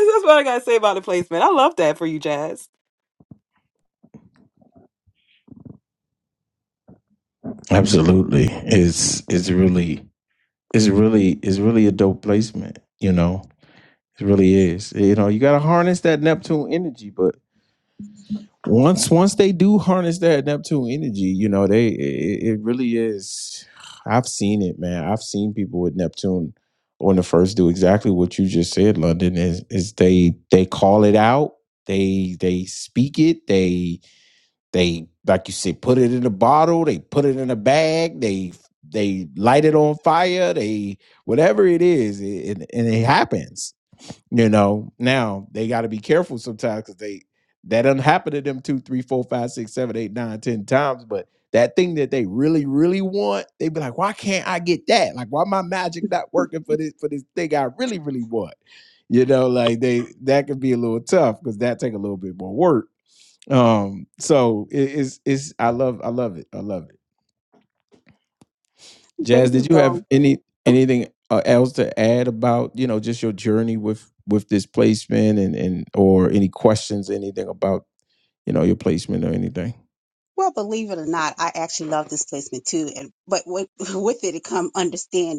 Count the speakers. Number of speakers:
3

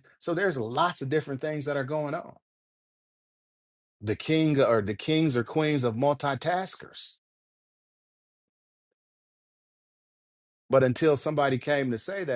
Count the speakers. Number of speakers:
1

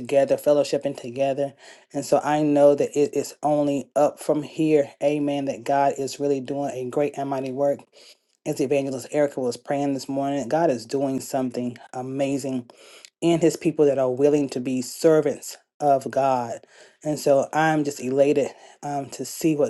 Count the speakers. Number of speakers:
1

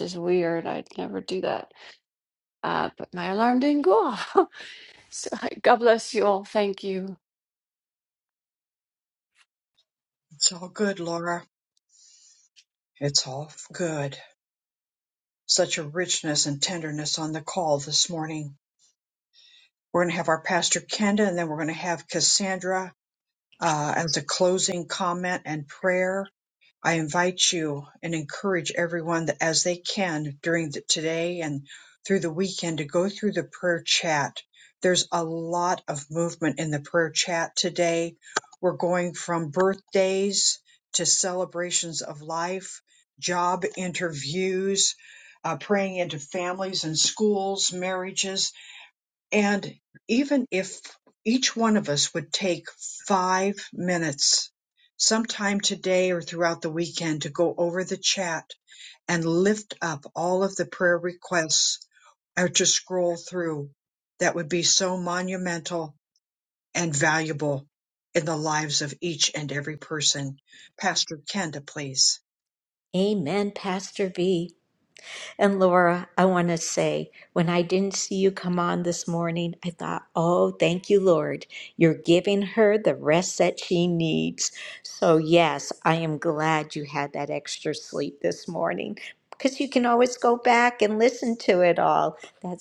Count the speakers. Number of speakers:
3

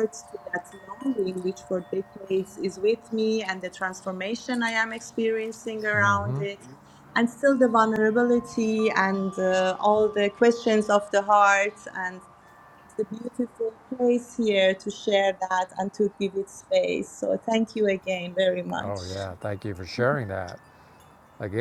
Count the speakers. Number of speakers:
2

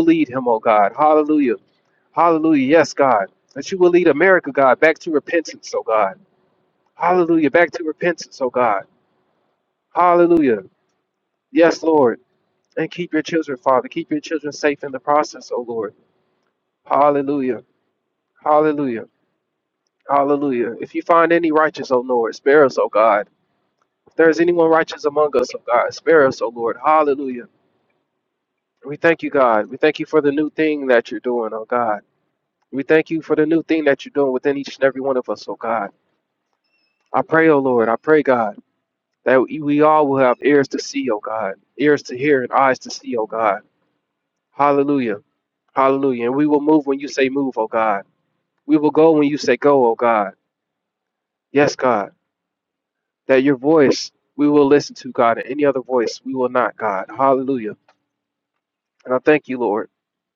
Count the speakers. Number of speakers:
1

